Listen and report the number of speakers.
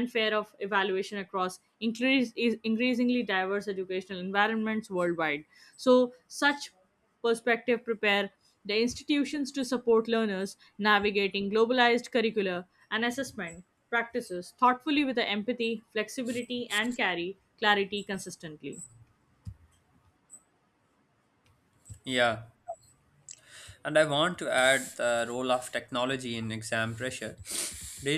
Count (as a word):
two